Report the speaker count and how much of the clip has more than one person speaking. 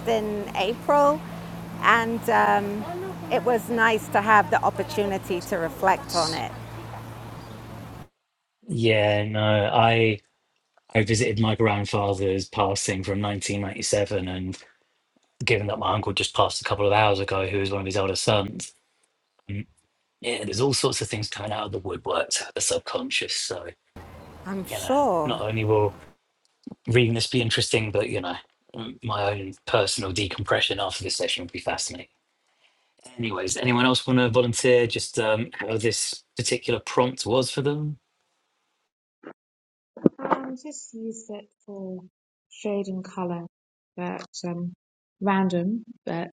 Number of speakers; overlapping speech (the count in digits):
3, about 2%